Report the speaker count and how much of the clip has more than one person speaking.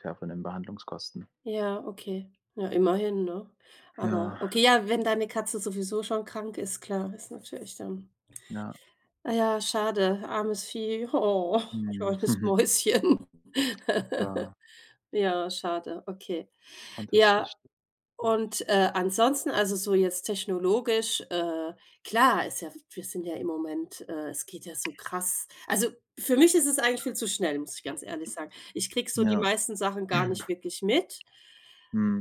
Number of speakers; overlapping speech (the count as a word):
two, about 4%